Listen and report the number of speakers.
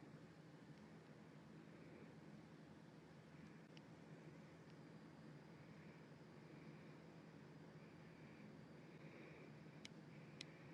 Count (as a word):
zero